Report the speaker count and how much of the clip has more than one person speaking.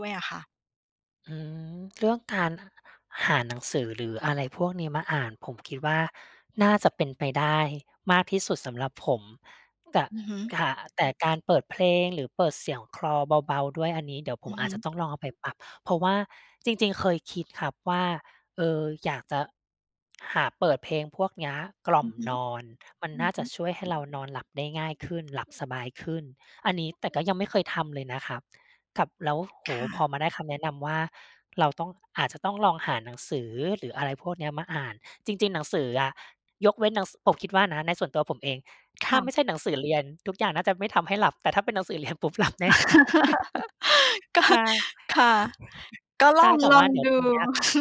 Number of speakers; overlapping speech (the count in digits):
2, about 4%